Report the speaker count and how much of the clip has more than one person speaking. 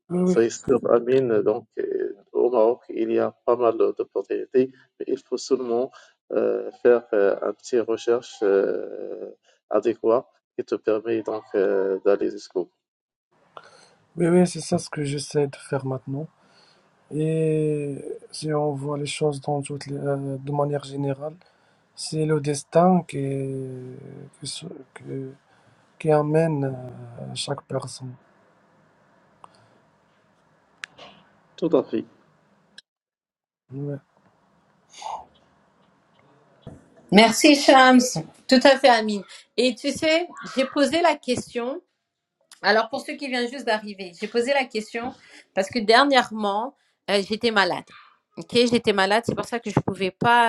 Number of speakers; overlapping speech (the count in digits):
3, under 1%